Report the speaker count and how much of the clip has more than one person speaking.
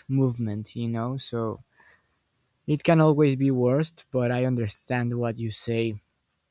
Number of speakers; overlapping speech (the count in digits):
1, no overlap